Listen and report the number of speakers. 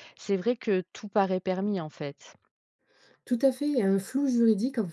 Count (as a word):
two